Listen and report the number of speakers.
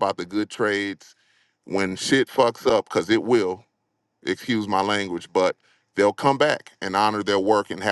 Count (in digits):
1